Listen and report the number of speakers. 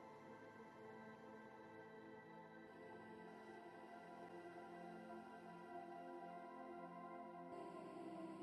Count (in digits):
0